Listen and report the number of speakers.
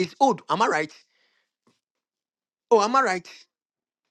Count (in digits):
1